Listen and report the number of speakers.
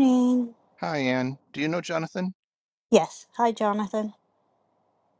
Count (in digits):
2